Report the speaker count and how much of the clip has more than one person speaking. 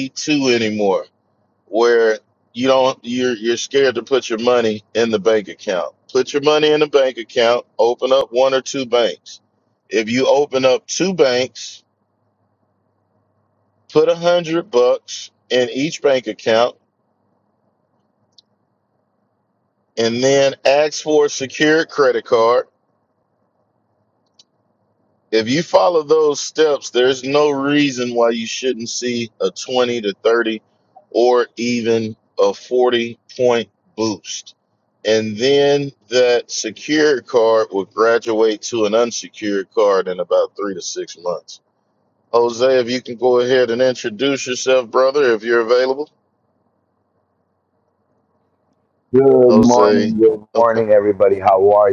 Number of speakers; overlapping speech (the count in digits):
2, about 2%